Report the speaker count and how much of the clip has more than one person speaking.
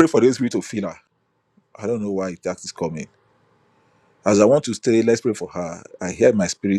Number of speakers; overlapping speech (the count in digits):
1, no overlap